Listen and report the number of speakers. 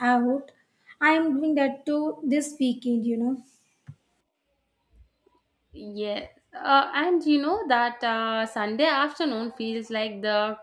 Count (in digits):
2